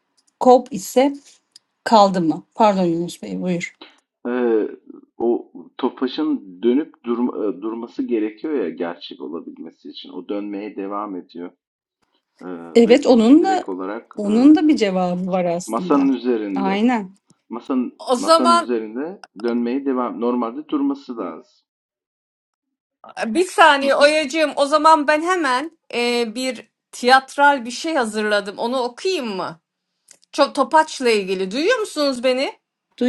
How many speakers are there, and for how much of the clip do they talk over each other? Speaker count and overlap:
3, about 7%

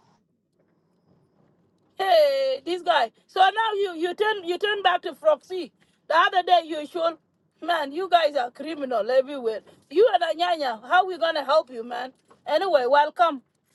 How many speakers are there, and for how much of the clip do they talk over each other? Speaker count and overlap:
1, no overlap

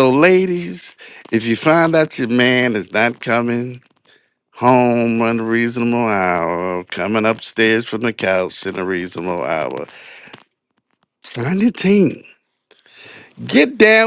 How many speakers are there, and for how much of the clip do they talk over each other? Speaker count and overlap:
1, no overlap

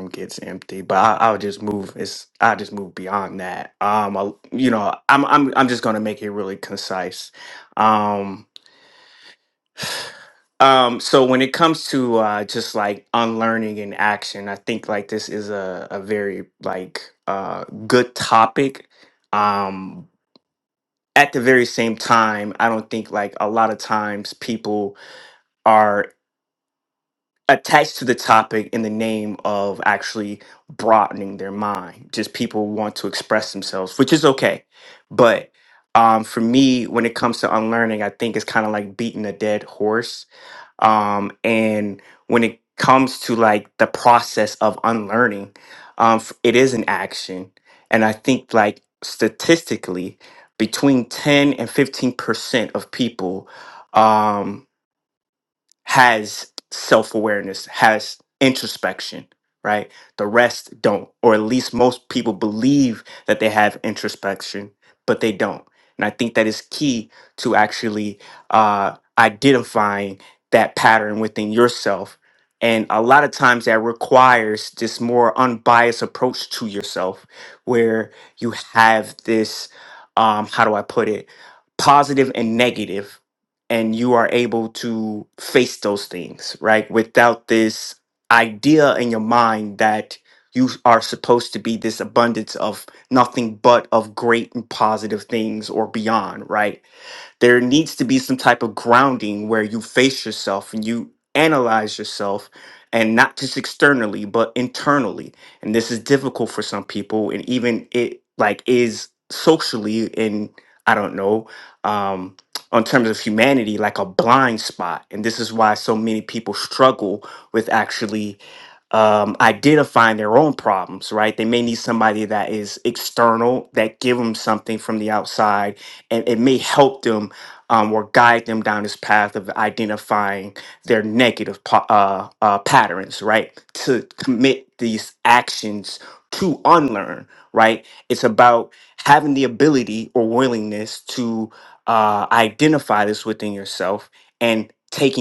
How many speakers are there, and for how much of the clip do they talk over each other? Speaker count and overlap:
1, no overlap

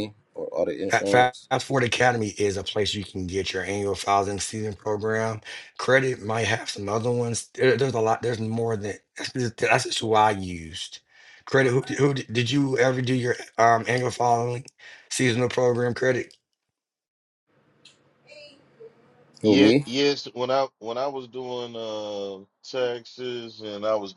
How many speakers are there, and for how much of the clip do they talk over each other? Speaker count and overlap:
3, about 2%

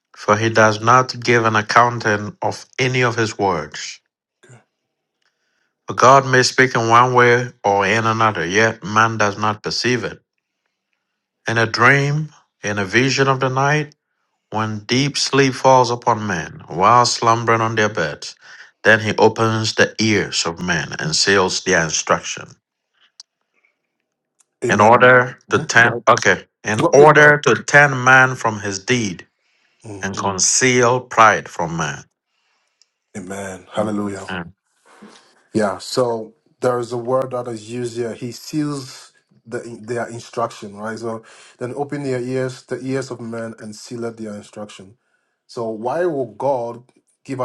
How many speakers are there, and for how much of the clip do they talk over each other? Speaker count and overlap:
2, about 3%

